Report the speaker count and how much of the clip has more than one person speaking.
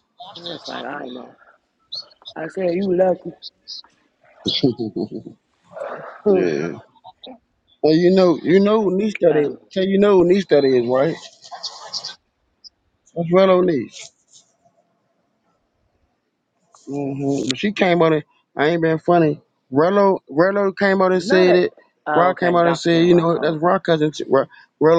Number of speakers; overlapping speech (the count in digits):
2, about 9%